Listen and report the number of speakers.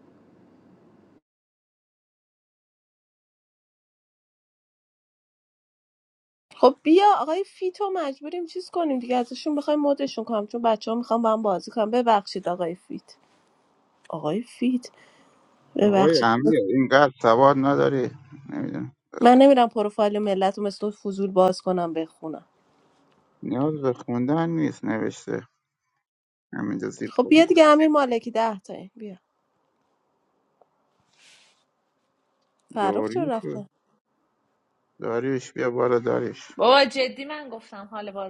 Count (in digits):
3